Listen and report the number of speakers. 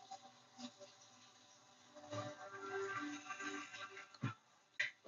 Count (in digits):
0